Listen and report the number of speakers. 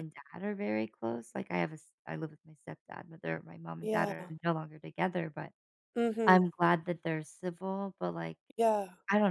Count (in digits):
2